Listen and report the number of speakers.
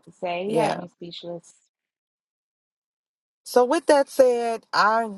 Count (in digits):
2